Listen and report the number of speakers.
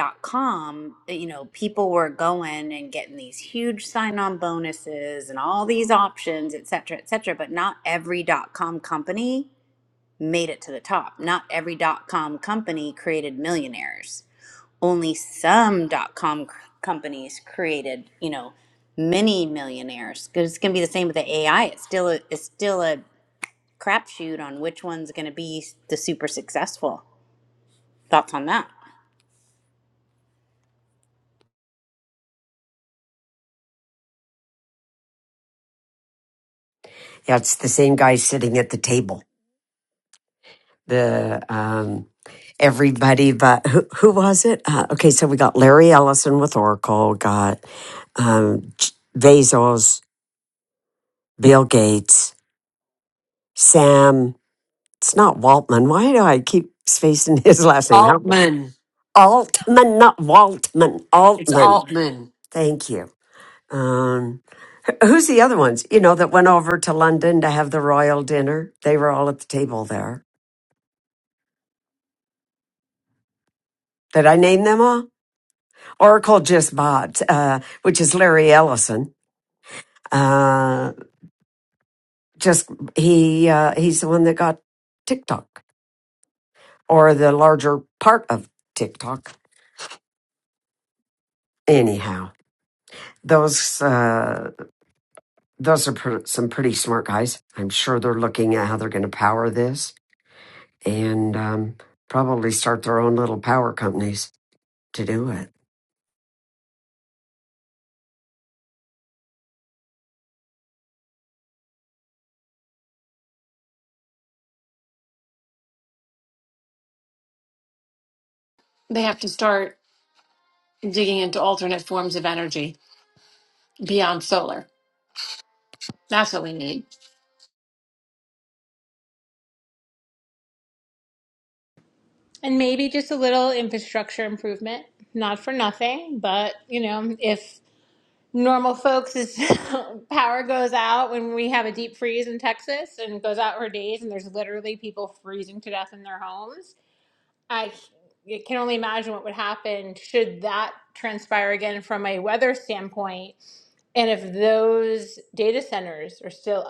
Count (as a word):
five